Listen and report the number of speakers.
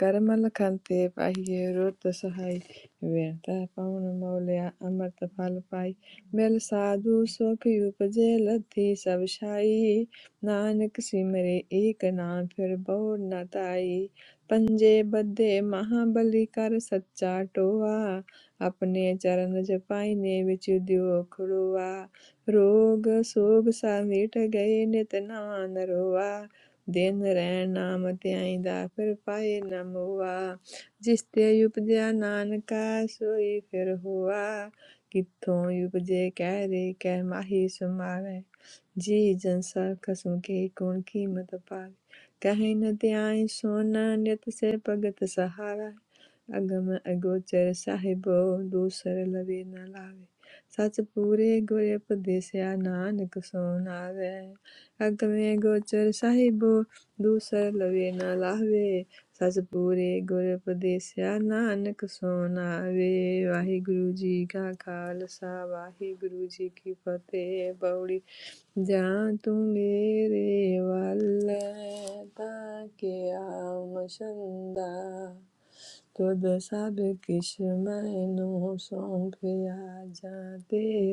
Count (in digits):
1